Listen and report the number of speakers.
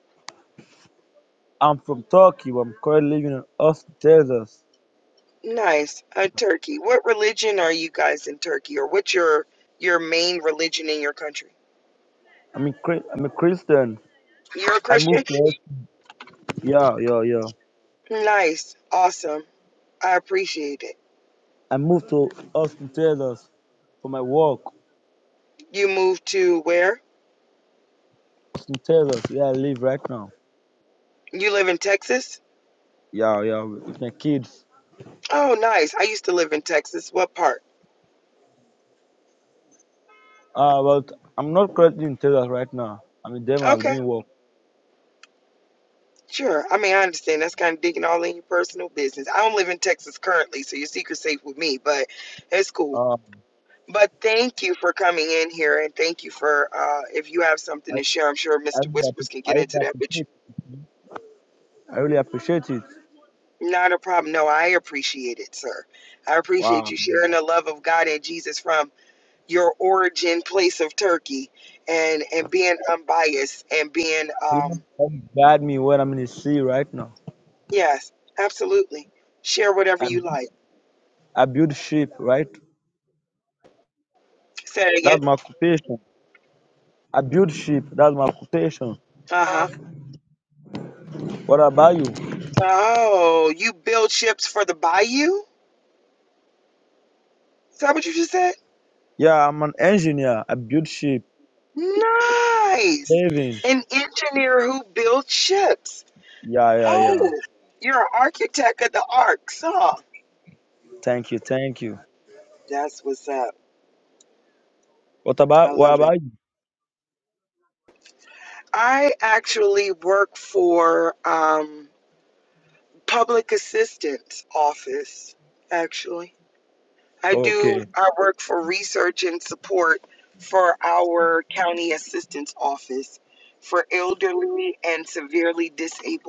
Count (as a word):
two